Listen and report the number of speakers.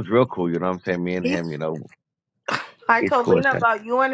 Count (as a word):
two